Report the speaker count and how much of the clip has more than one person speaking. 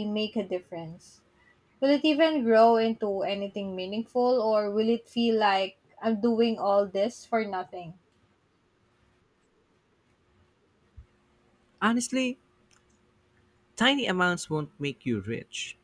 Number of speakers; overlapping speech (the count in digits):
2, no overlap